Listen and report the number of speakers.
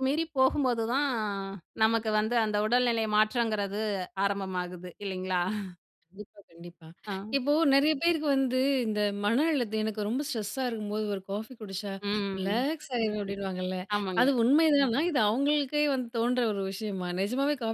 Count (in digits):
2